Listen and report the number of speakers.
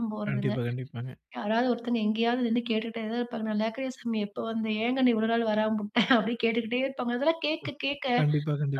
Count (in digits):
2